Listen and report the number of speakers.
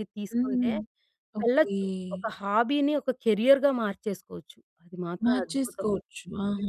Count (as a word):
two